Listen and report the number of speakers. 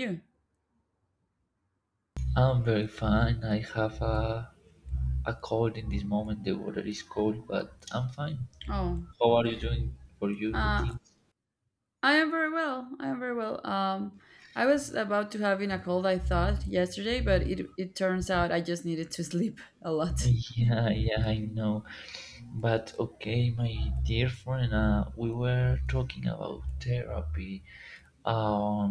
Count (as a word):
two